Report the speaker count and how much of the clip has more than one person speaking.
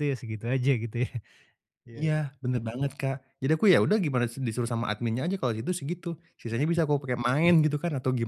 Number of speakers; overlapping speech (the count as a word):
two, about 4%